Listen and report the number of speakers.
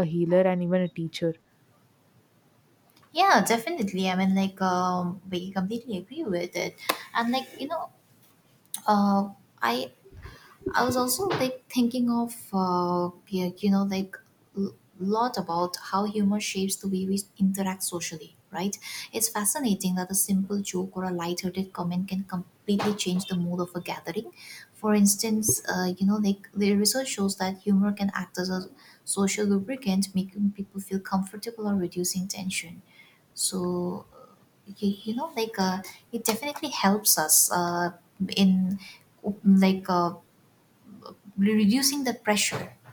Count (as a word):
two